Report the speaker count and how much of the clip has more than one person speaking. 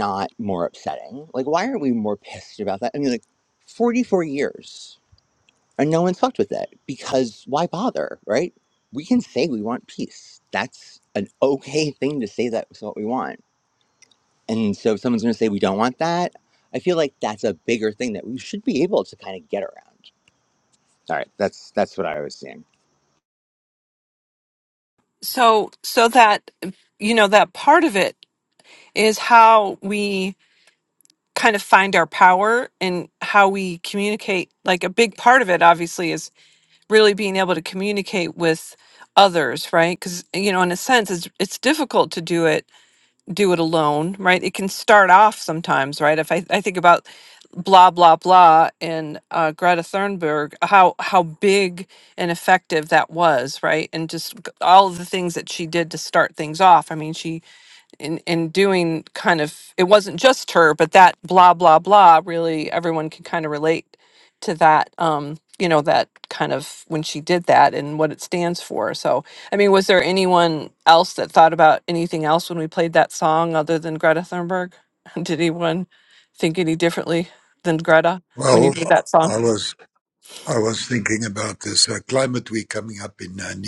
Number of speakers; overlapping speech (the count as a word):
three, under 1%